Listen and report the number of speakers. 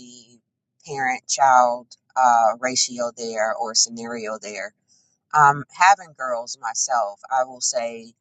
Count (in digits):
1